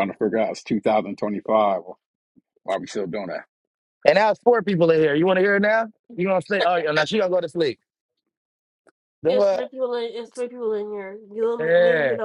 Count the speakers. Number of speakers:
three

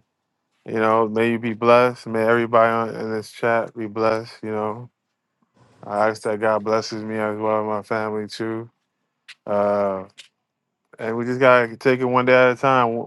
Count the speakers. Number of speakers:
one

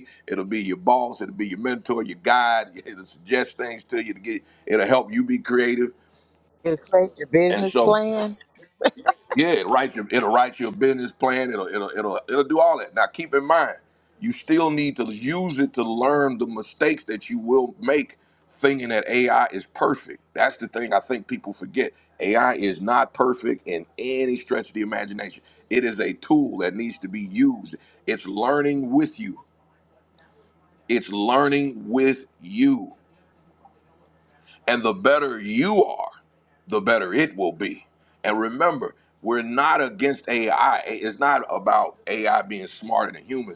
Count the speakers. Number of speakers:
two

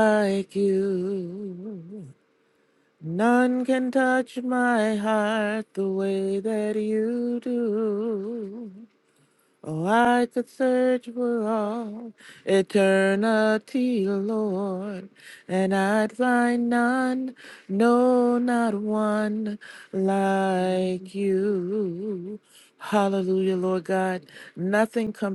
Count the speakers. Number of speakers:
one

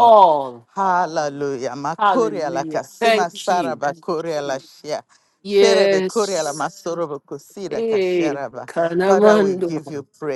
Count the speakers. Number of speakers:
two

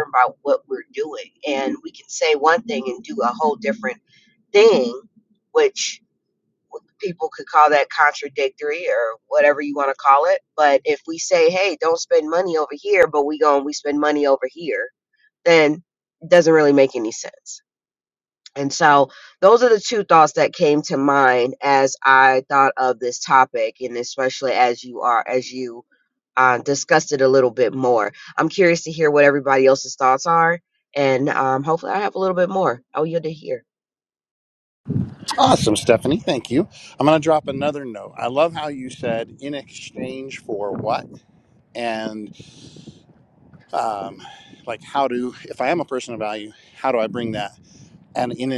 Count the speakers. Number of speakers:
two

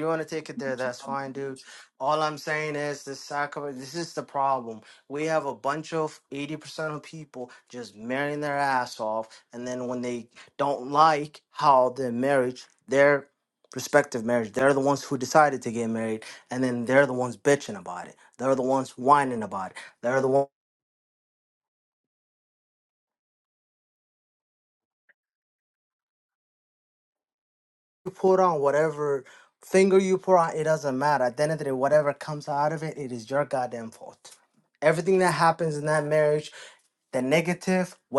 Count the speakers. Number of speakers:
one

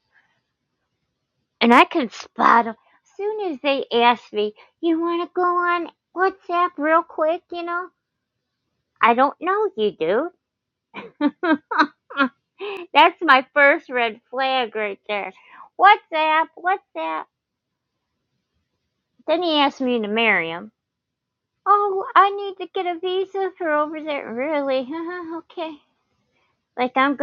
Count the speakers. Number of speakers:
one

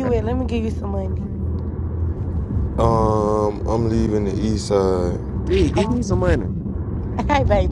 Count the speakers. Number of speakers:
three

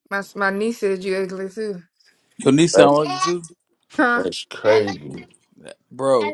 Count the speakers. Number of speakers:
three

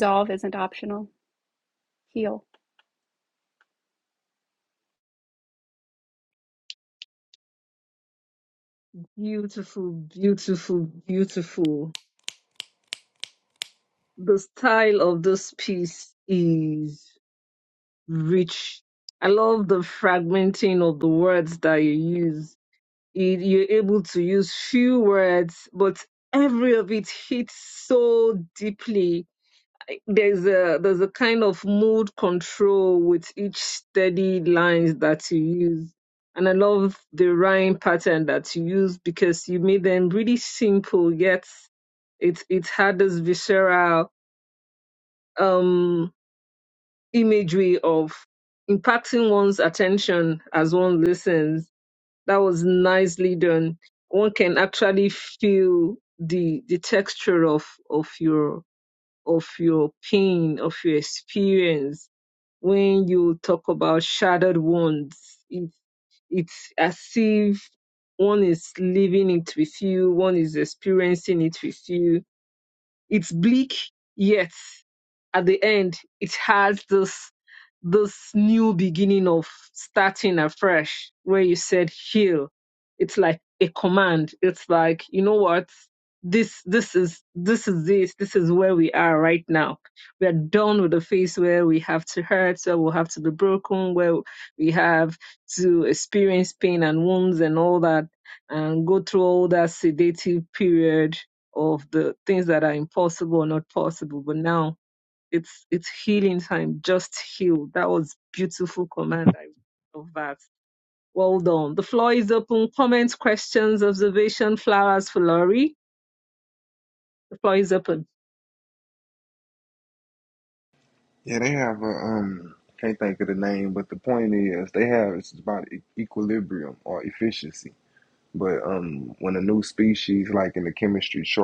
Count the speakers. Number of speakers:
three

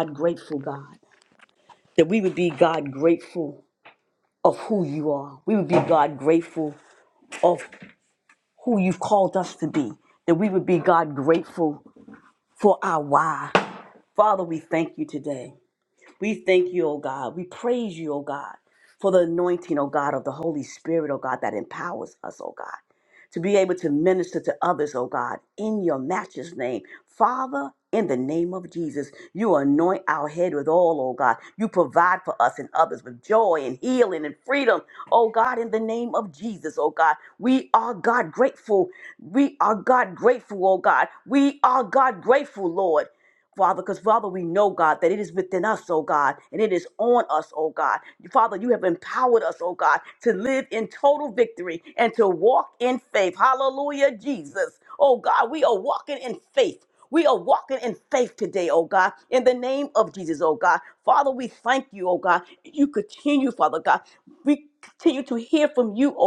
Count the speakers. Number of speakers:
one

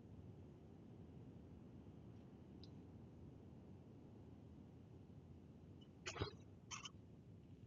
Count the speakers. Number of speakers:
zero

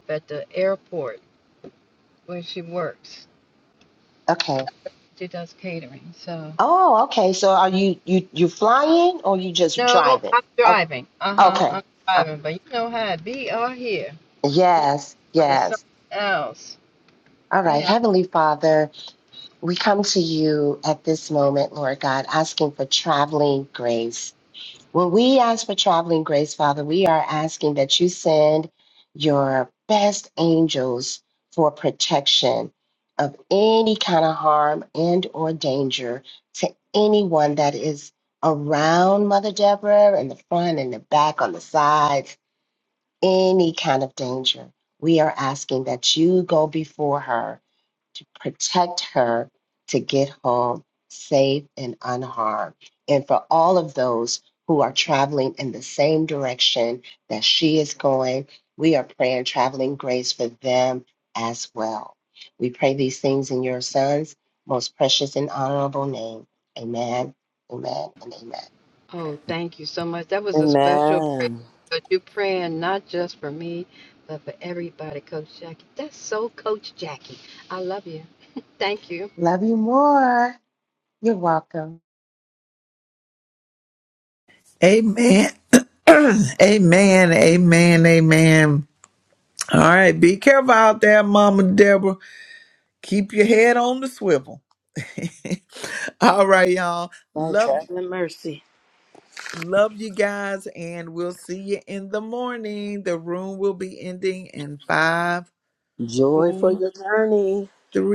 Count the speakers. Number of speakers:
four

